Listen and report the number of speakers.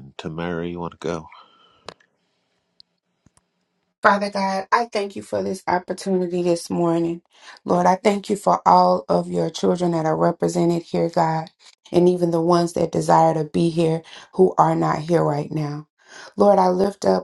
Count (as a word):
two